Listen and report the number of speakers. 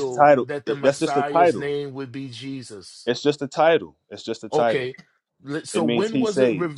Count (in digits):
2